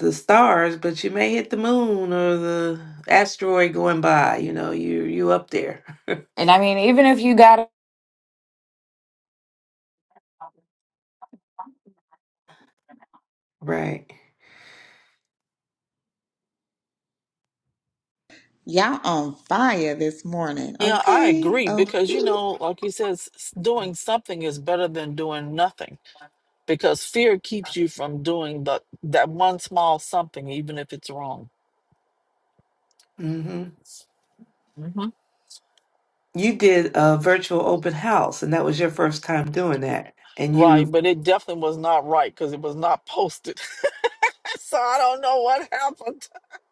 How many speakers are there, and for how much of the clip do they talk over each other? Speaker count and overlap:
4, about 3%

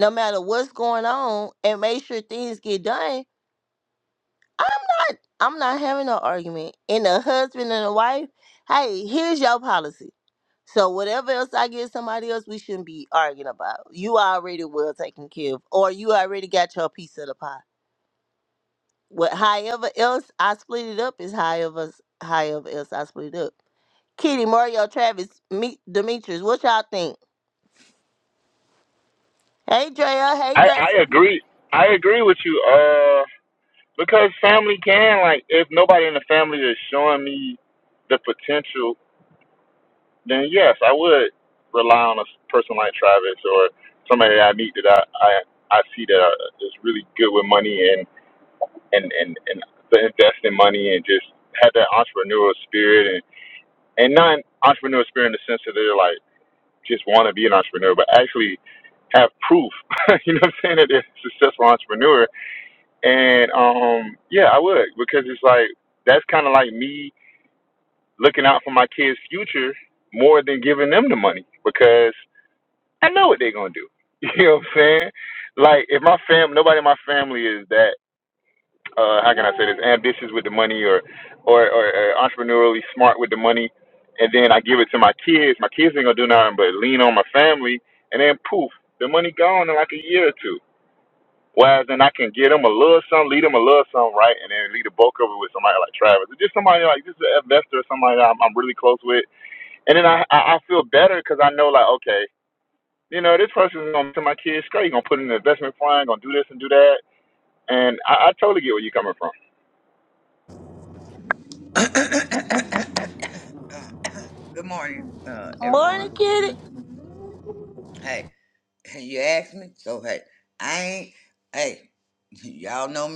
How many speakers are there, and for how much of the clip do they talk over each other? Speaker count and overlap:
3, about 1%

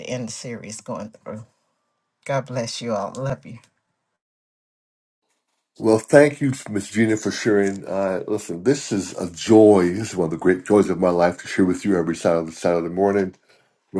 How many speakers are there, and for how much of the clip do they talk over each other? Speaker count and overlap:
2, no overlap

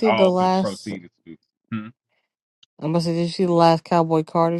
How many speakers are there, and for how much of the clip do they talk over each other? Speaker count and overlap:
2, about 21%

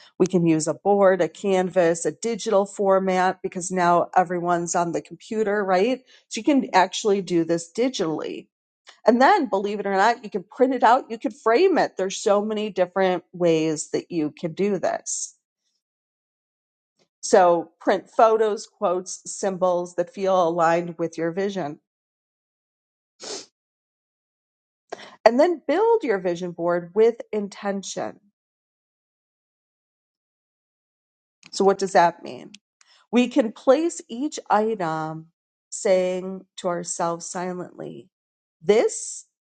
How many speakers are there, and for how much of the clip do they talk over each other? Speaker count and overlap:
1, no overlap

